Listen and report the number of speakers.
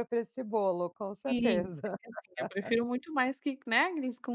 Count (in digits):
2